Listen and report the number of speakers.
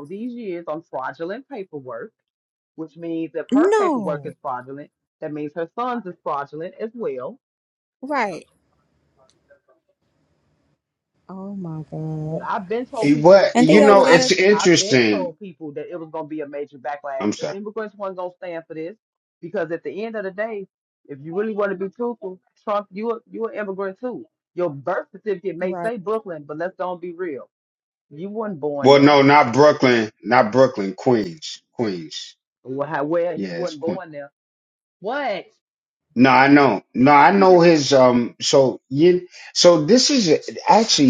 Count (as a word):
three